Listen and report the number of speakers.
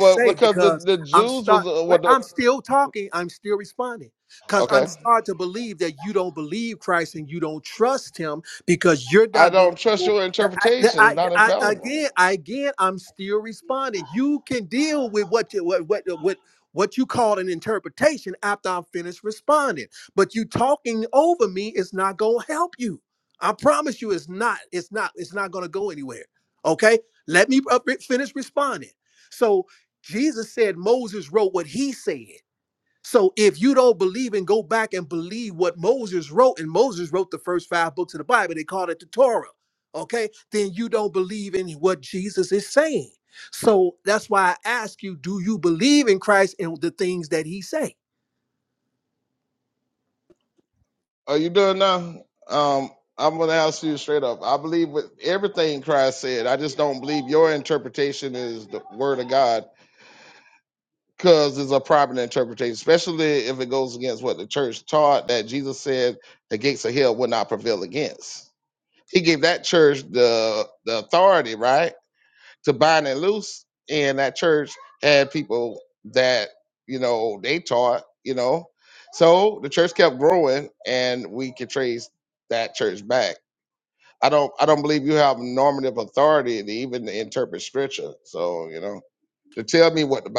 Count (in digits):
2